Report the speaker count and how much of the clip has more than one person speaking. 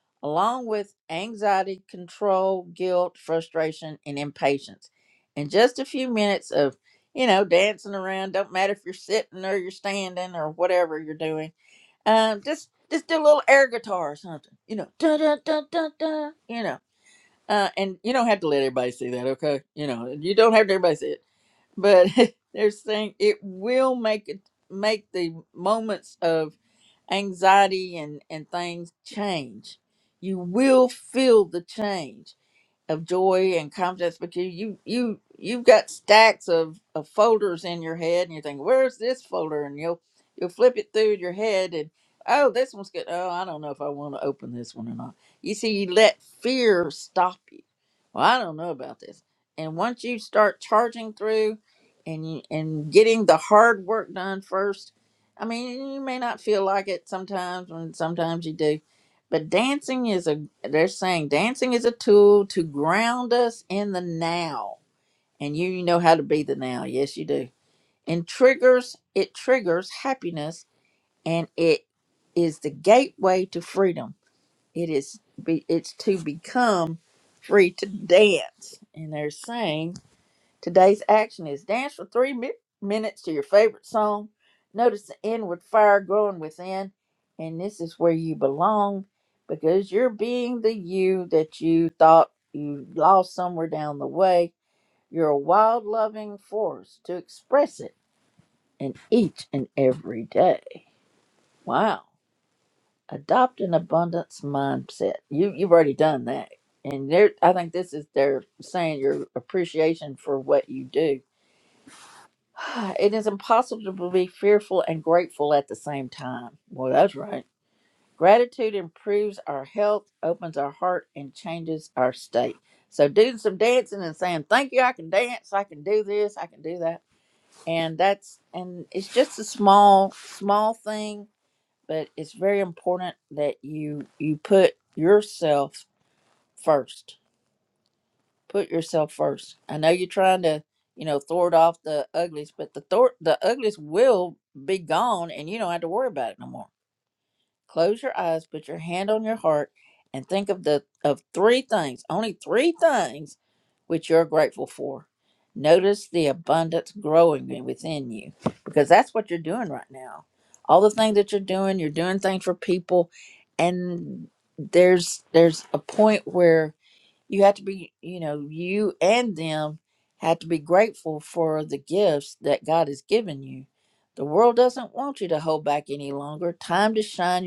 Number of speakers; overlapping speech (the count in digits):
1, no overlap